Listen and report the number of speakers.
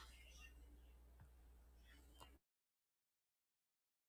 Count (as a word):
zero